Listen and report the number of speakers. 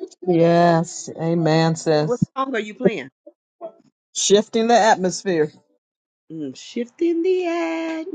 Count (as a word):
two